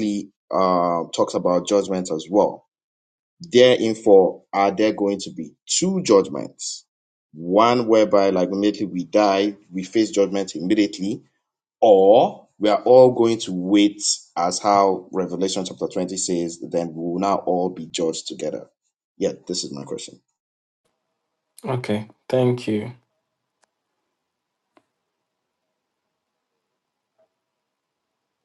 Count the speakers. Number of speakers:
2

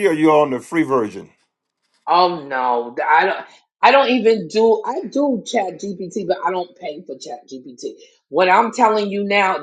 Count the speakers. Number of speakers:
2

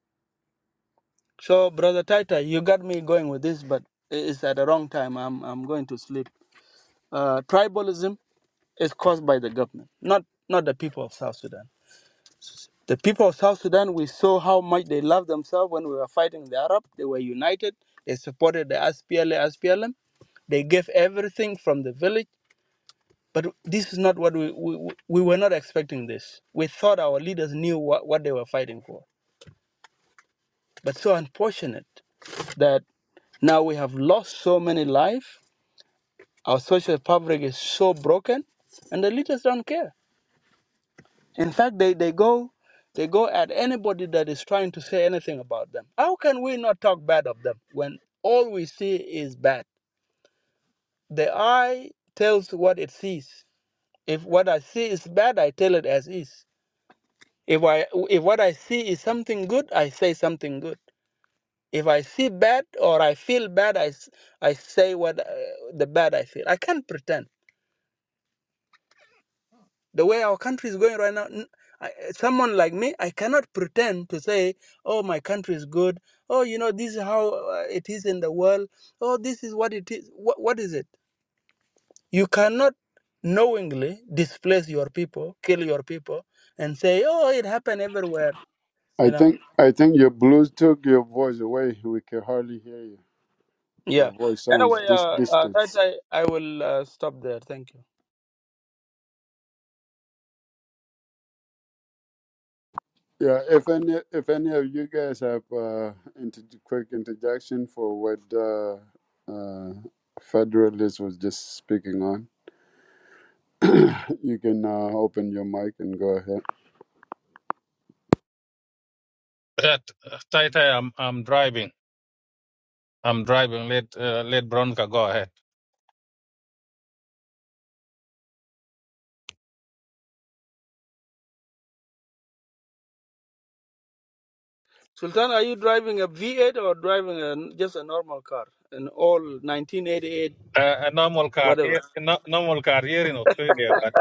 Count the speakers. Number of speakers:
3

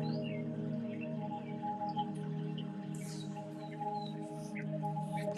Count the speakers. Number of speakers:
0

